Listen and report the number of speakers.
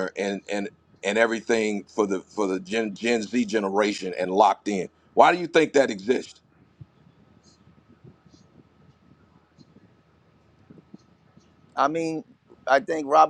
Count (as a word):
two